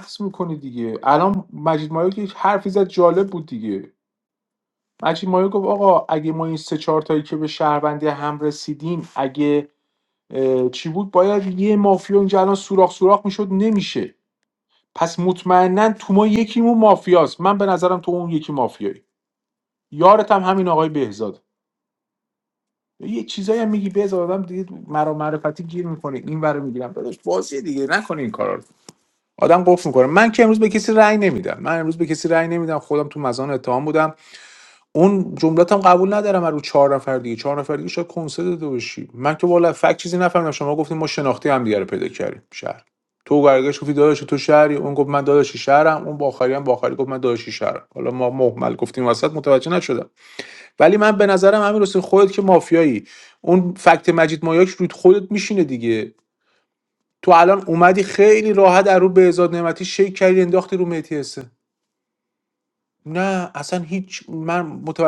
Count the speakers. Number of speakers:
one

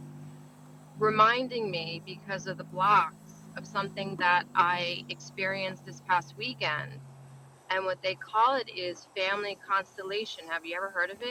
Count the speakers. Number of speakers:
one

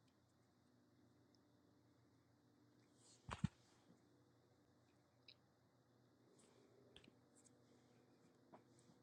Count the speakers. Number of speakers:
zero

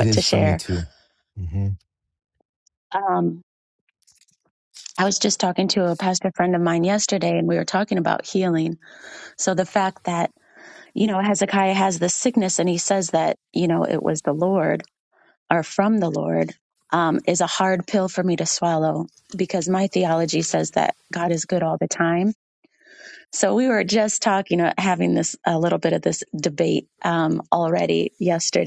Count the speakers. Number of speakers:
two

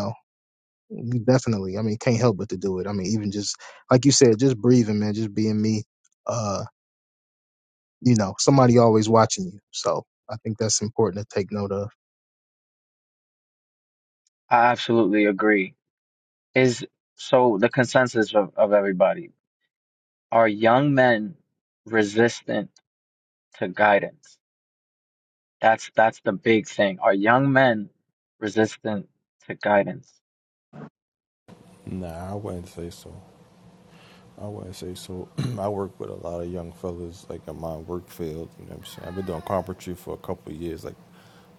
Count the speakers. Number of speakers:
three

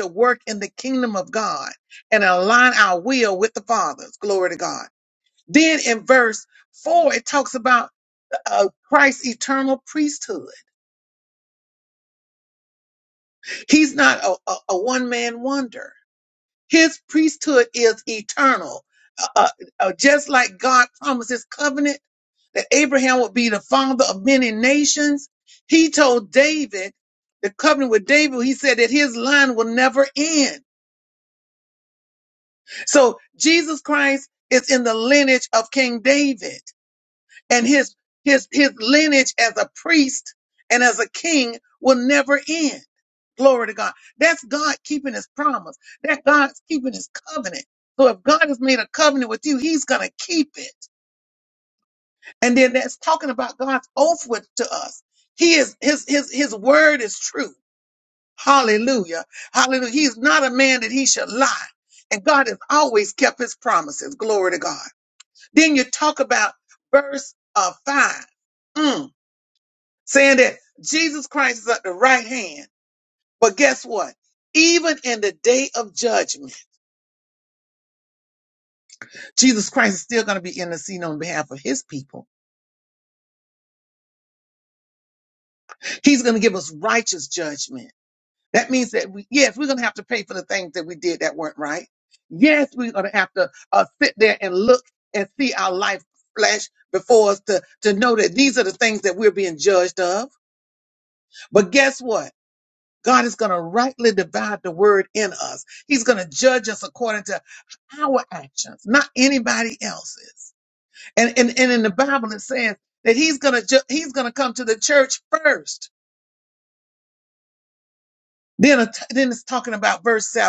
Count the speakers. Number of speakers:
one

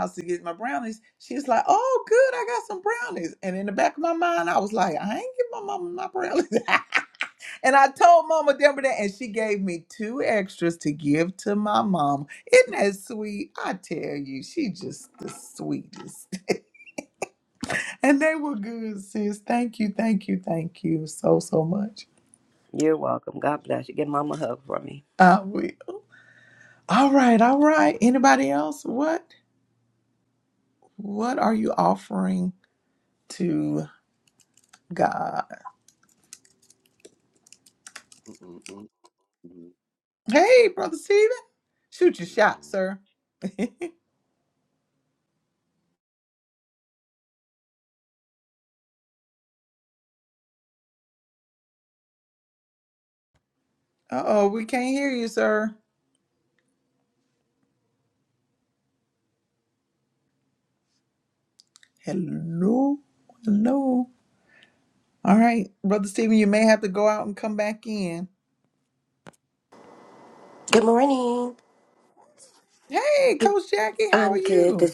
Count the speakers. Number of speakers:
four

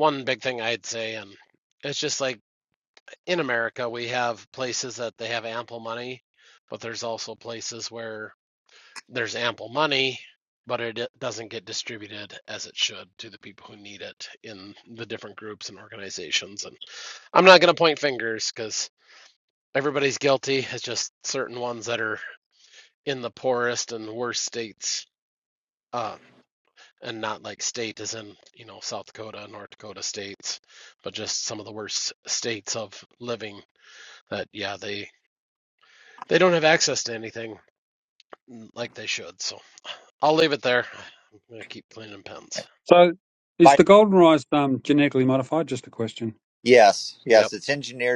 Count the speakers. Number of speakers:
three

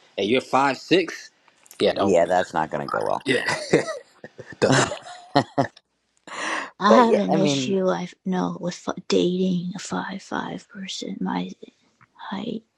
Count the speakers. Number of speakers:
three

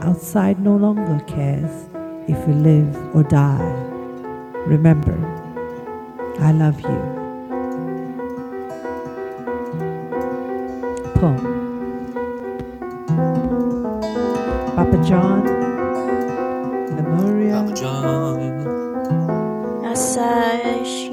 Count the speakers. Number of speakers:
three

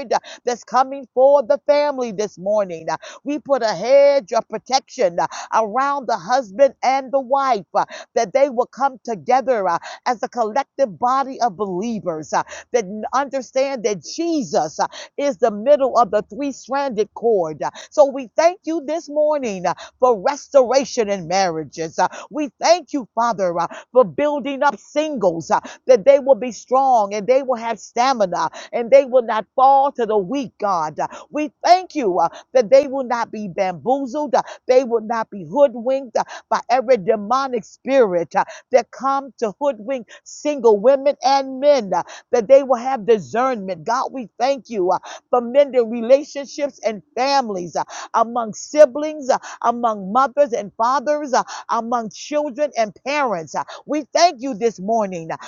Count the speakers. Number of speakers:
one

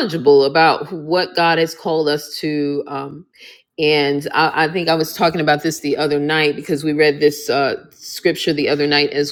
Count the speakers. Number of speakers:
one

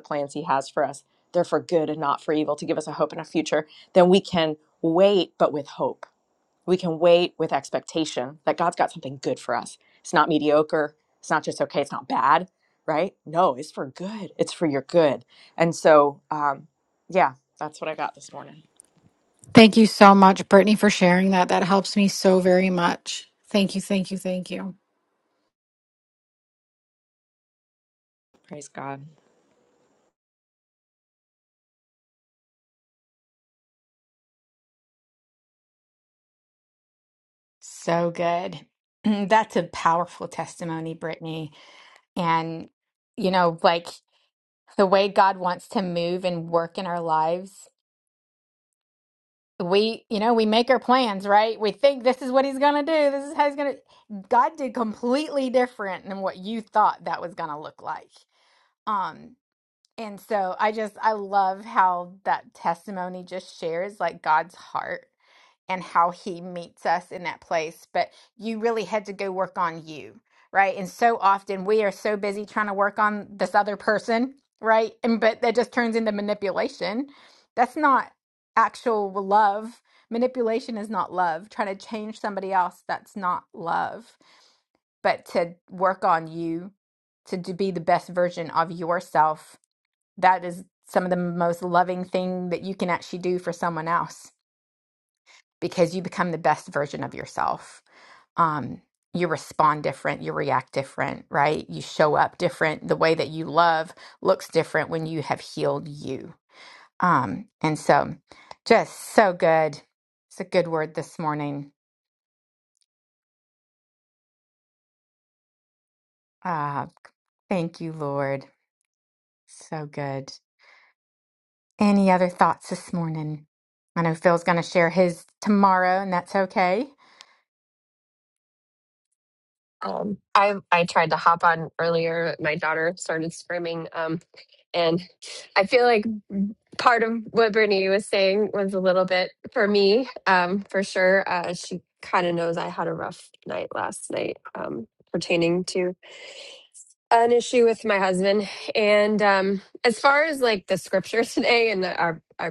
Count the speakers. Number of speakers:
four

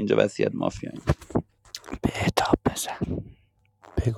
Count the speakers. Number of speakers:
two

